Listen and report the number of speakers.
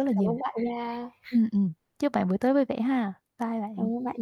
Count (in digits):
2